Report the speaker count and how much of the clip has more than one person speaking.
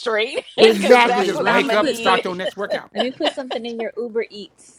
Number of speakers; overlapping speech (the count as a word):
three, about 38%